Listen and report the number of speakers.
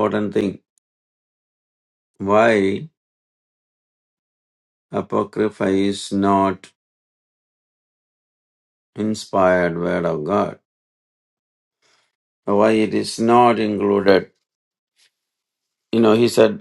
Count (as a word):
one